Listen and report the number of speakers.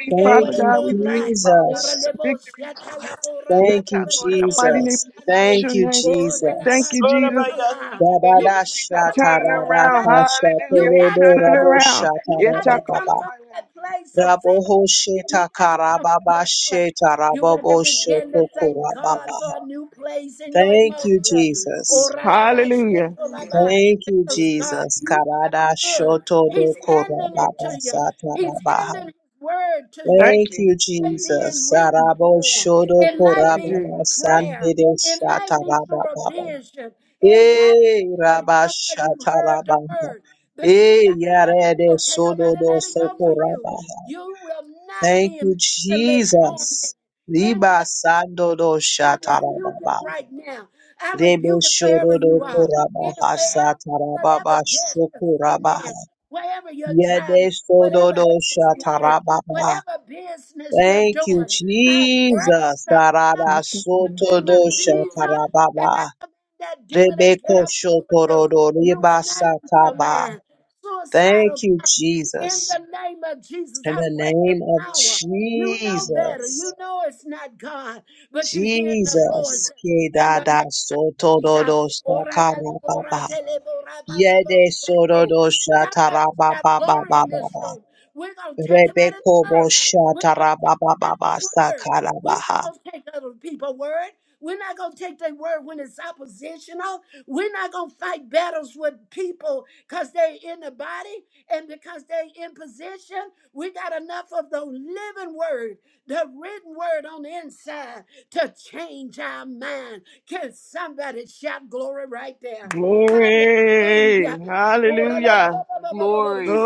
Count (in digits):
4